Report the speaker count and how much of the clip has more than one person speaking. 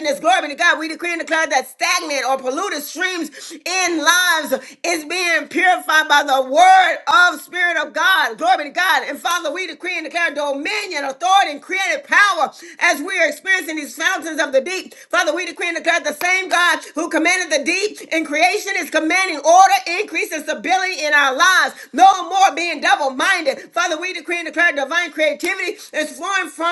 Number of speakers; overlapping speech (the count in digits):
1, no overlap